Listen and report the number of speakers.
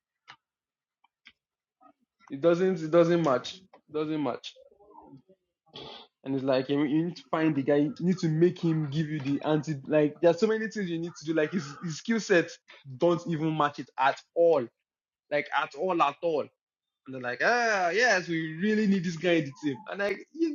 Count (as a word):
one